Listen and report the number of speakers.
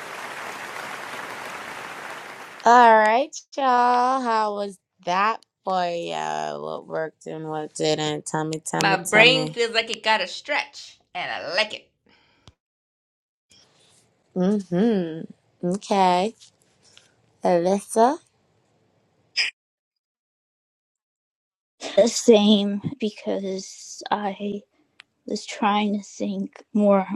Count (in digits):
3